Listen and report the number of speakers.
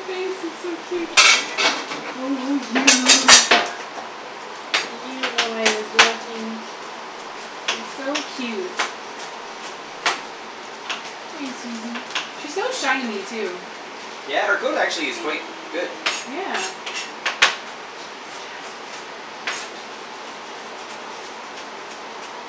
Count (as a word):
two